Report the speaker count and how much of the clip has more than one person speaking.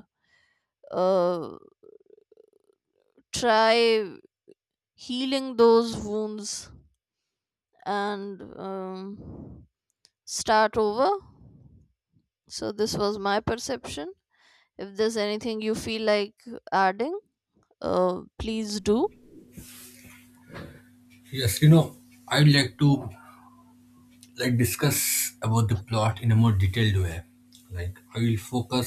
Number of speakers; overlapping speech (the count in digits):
2, no overlap